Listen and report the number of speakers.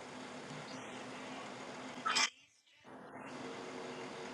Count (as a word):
zero